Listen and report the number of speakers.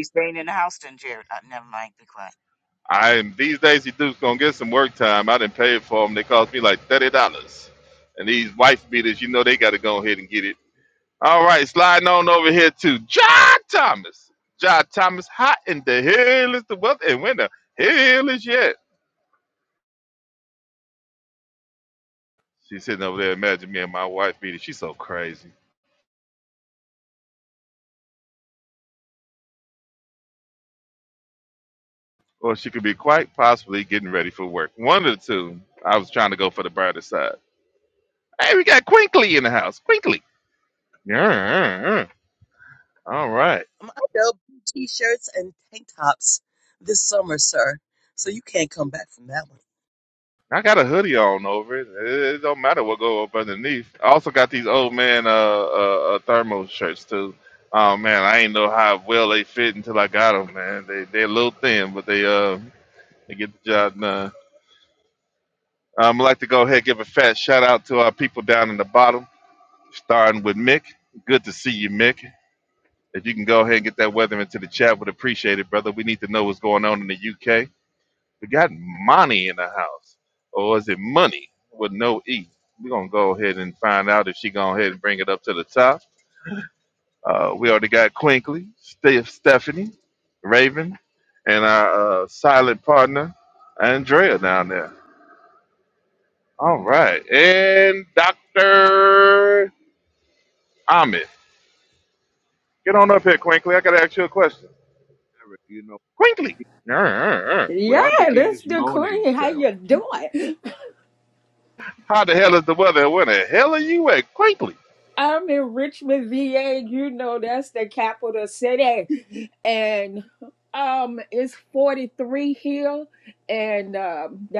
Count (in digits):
5